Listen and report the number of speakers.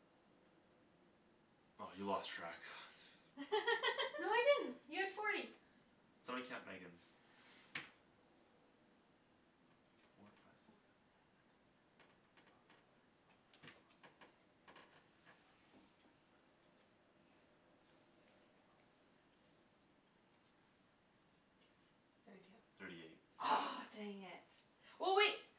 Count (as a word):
three